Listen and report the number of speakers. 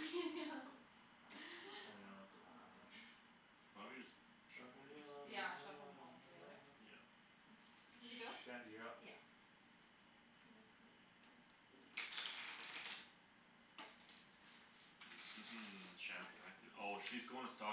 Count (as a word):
four